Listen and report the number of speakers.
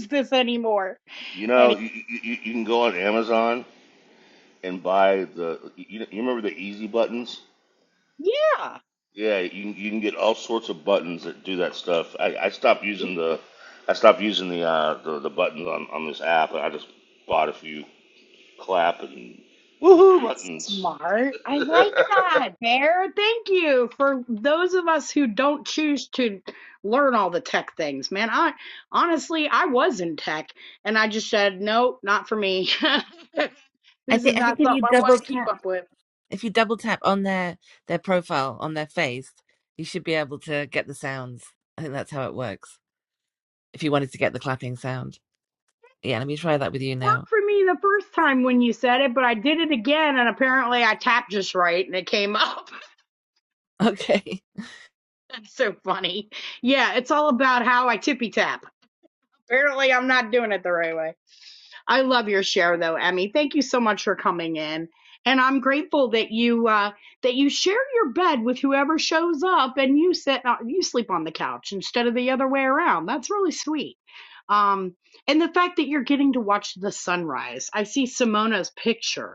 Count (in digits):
3